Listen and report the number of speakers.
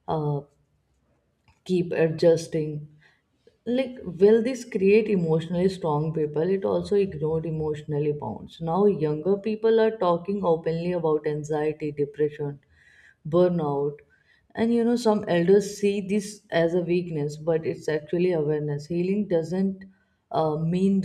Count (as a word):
one